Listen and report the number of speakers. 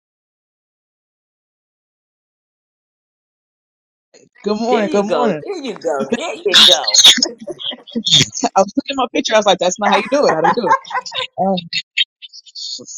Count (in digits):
2